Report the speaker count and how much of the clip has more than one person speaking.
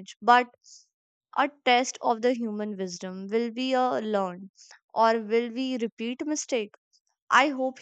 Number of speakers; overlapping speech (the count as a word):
one, no overlap